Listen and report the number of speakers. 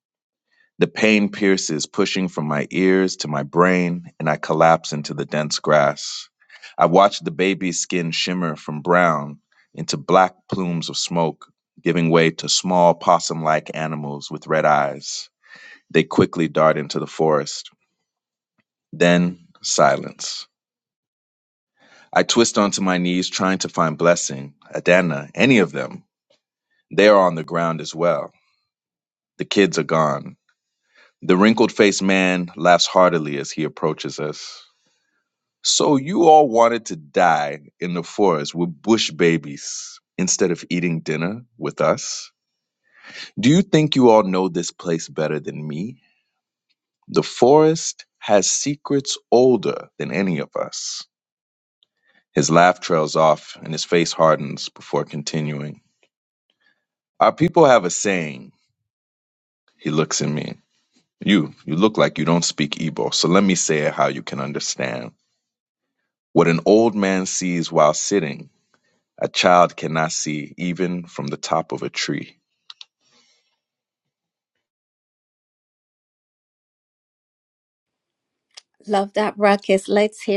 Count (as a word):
two